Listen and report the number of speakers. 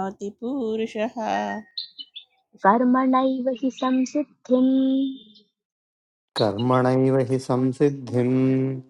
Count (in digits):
3